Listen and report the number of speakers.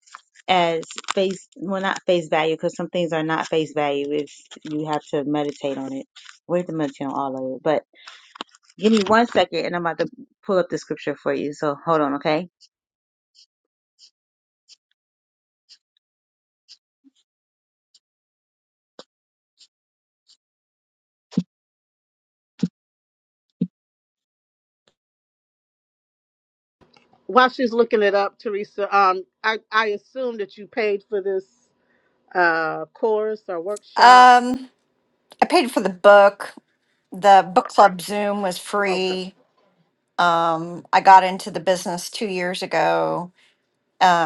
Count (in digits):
3